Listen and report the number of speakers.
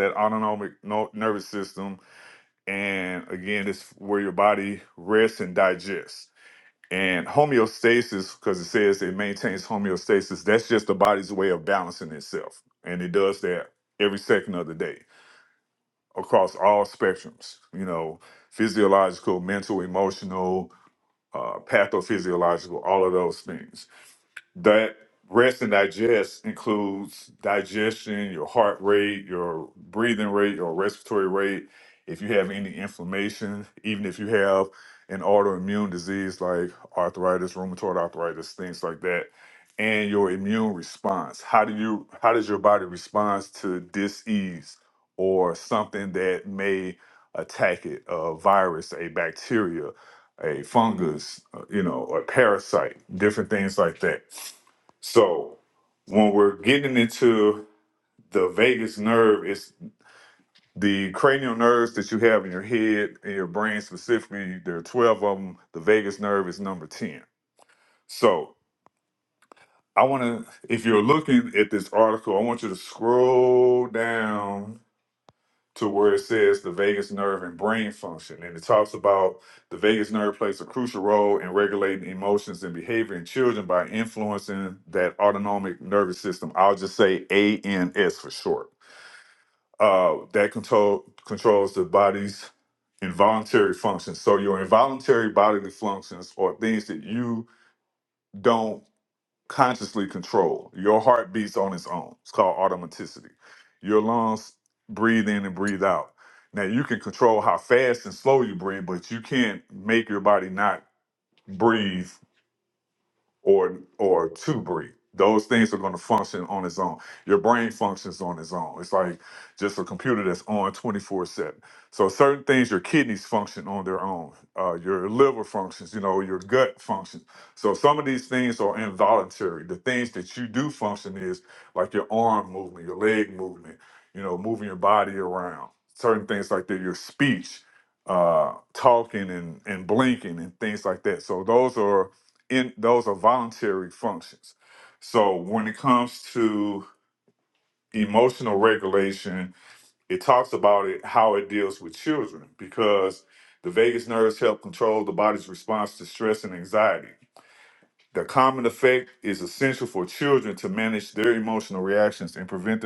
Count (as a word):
one